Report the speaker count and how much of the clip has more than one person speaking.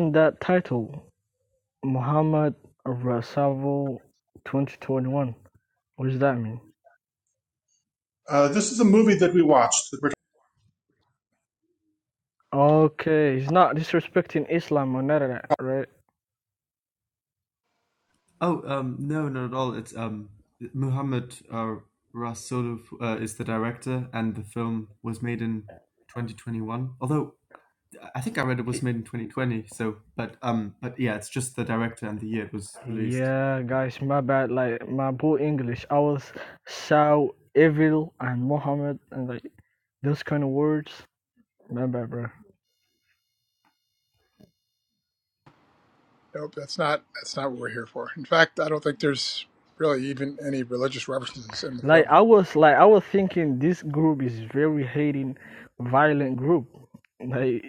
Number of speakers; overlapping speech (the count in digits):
4, about 1%